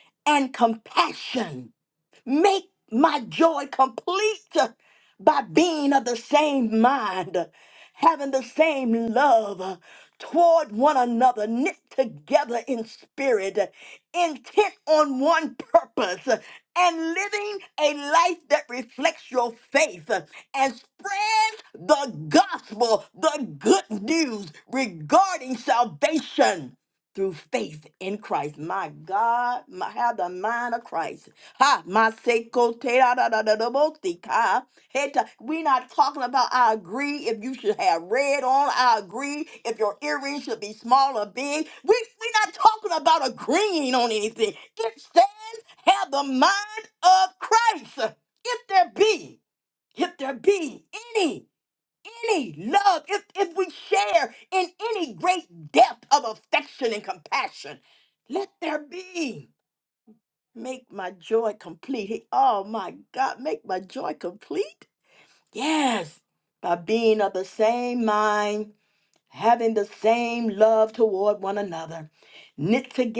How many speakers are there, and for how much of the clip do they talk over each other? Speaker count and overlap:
one, no overlap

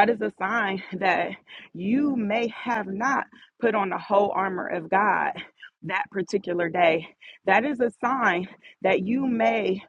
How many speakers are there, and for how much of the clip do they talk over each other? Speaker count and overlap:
one, no overlap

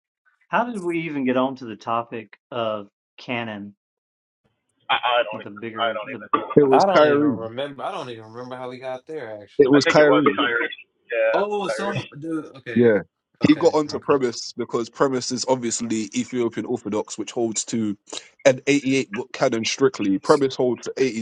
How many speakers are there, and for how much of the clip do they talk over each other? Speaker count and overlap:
four, about 19%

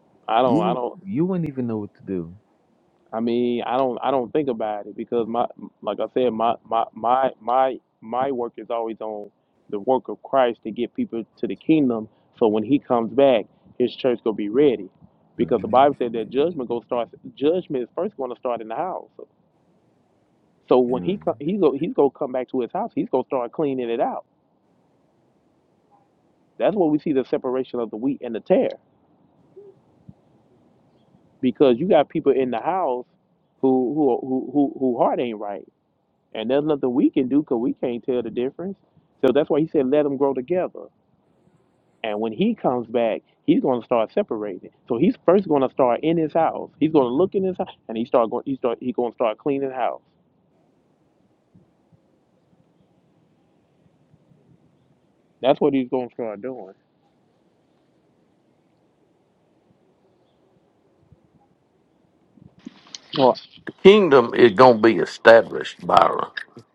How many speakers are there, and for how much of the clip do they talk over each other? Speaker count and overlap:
three, about 1%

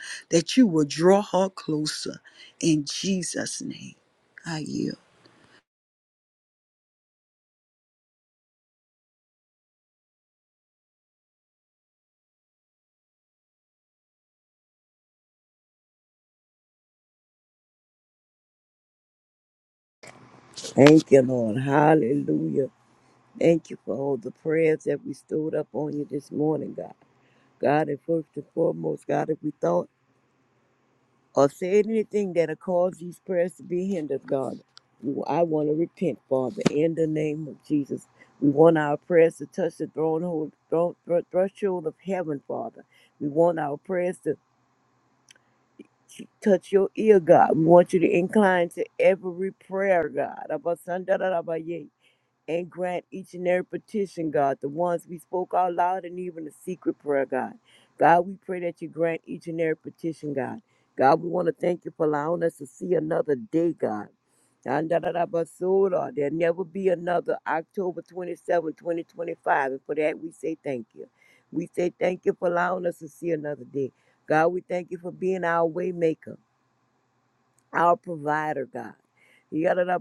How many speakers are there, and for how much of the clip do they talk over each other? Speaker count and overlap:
two, no overlap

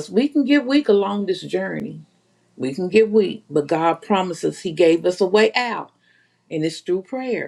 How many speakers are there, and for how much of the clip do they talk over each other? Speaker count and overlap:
one, no overlap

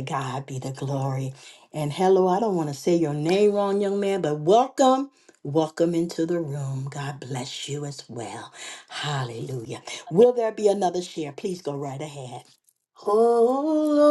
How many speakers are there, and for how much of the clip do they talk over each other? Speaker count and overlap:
two, no overlap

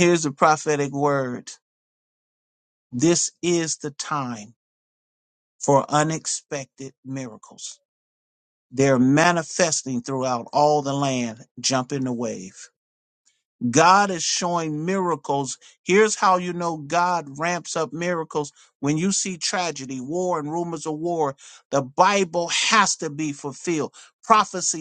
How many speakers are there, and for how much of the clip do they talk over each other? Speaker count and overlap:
one, no overlap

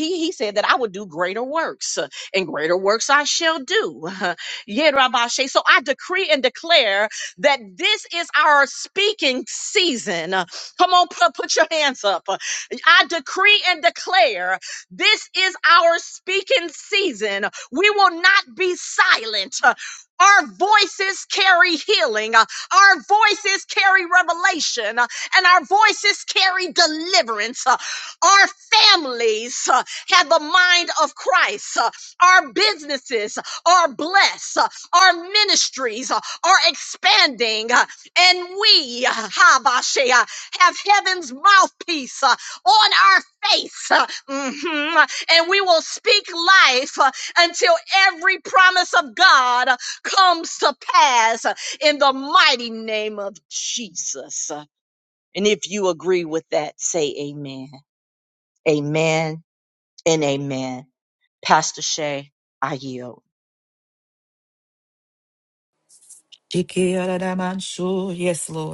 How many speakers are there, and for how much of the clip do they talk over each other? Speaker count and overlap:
two, no overlap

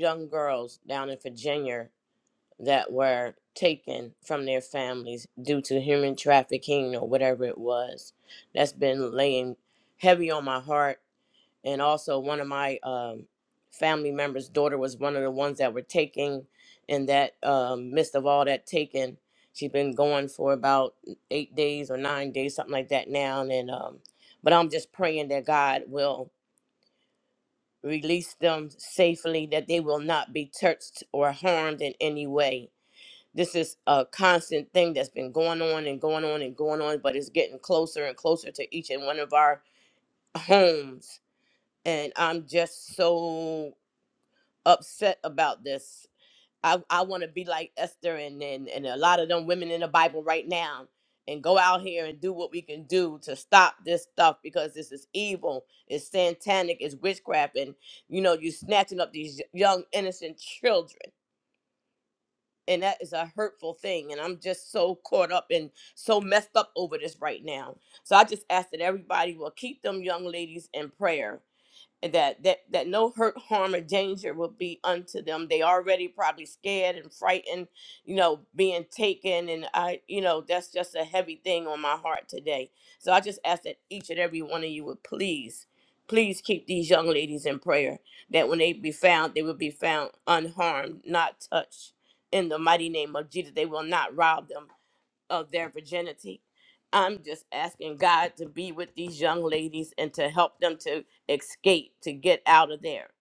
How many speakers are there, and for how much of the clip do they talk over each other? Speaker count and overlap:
one, no overlap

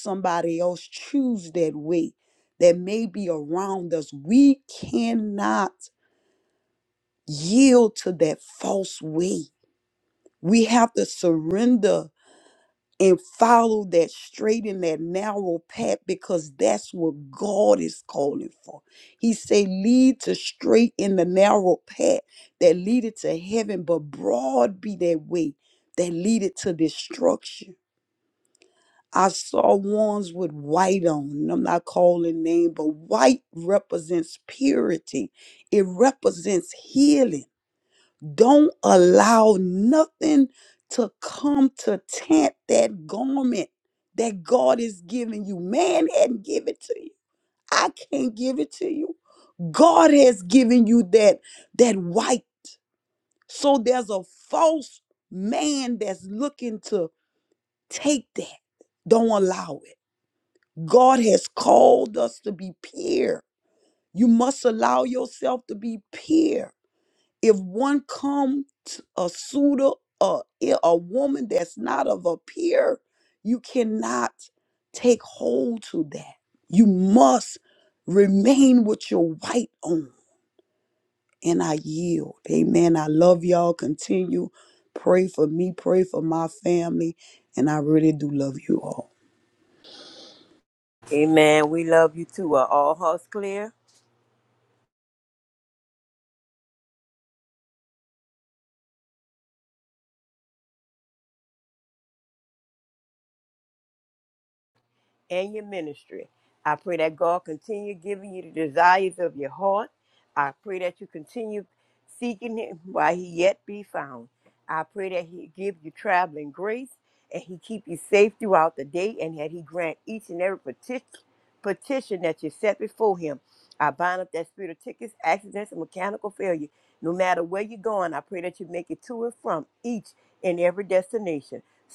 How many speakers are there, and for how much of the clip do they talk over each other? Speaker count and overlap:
two, no overlap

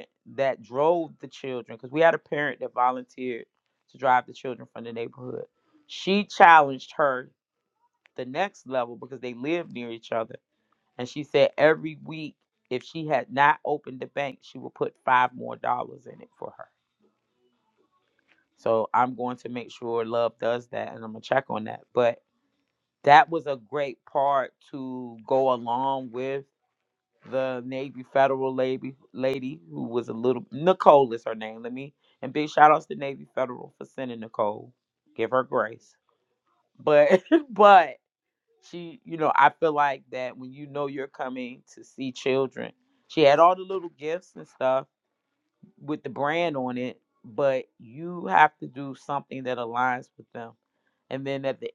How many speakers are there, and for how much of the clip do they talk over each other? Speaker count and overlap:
one, no overlap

